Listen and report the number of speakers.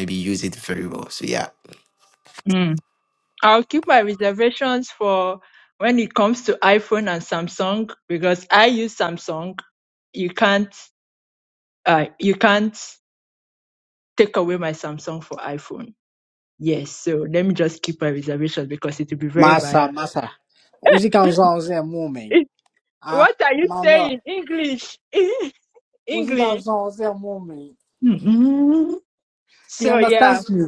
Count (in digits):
3